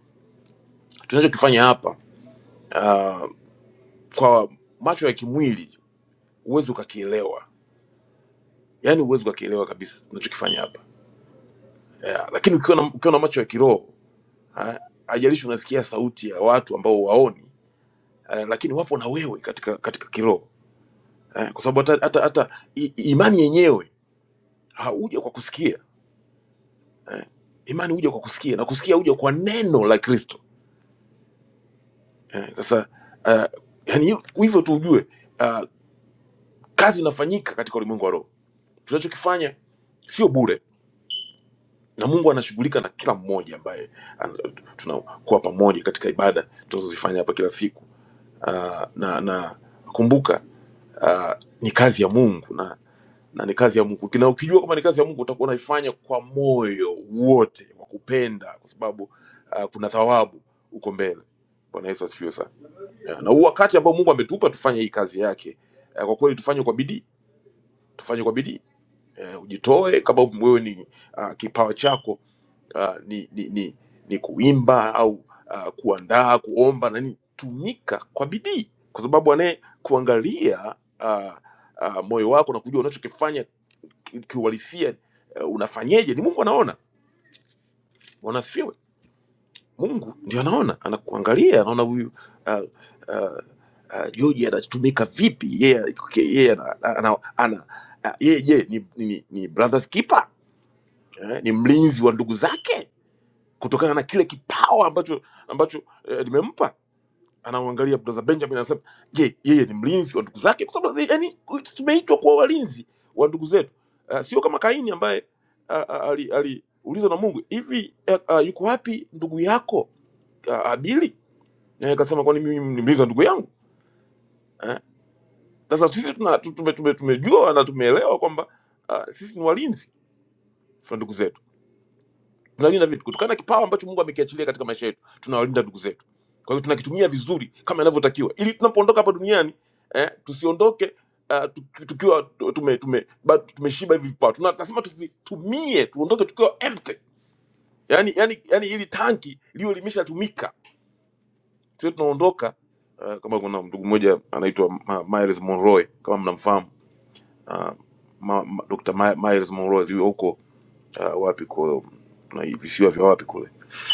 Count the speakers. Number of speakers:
one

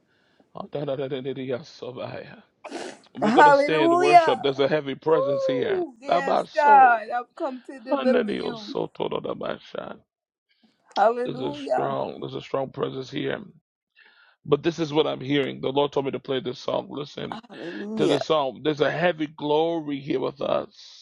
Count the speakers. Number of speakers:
two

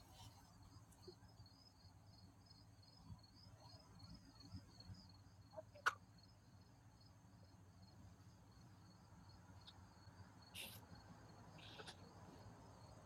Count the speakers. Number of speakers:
zero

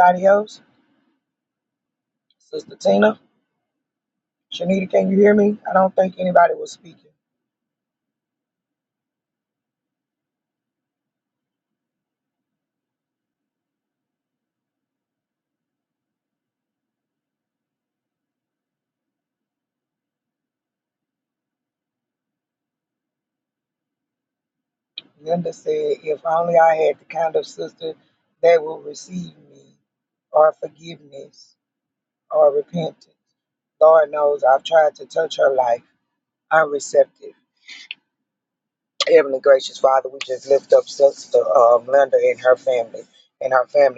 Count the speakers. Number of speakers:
one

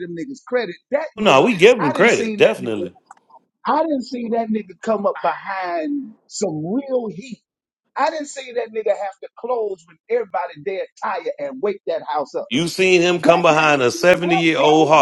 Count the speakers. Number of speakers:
two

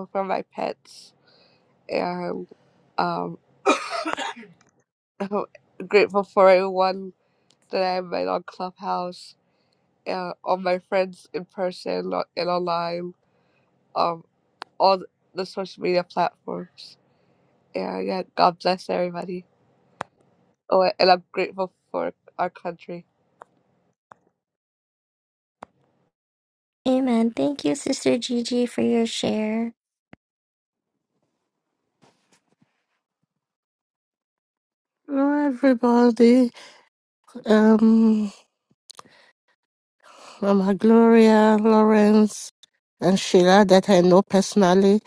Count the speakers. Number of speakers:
three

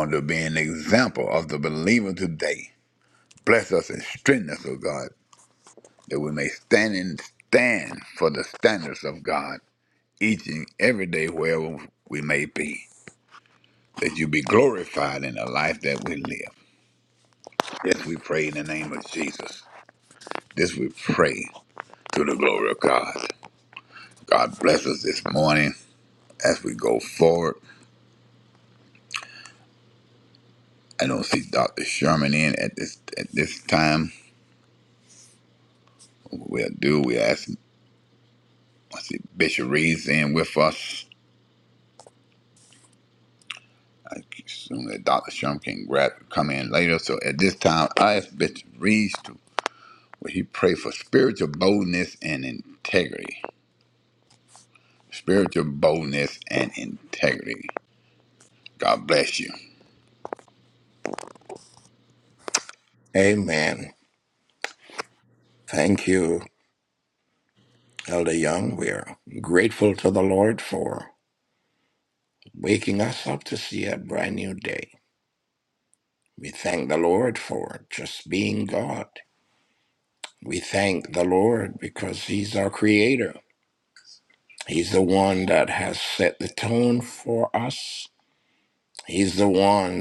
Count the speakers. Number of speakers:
two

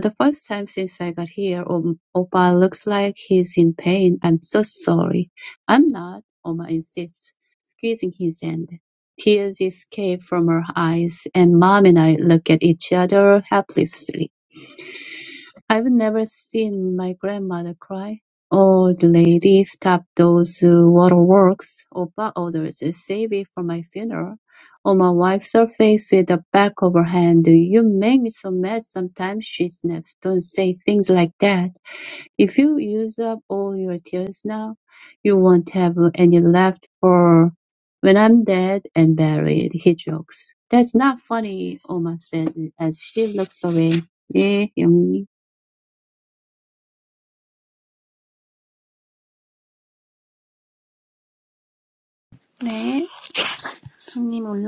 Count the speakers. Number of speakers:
two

